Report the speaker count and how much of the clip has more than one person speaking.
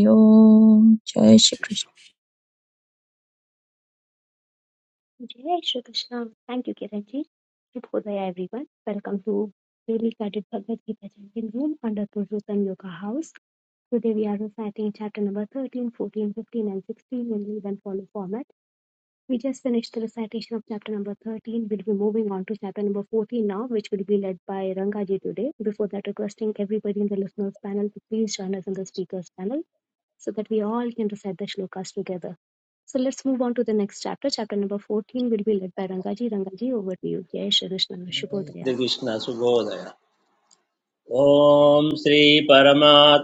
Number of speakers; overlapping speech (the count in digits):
3, about 1%